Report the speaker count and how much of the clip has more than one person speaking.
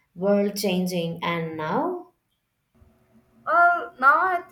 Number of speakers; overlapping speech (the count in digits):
2, no overlap